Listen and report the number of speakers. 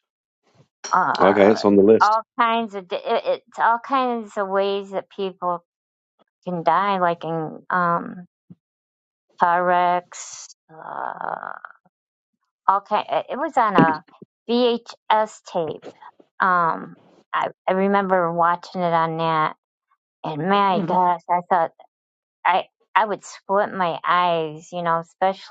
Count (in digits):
2